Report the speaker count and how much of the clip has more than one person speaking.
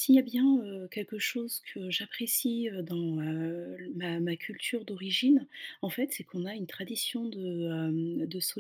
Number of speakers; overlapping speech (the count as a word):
one, no overlap